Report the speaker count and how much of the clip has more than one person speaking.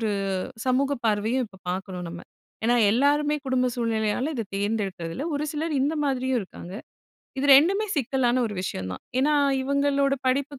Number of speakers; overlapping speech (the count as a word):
one, no overlap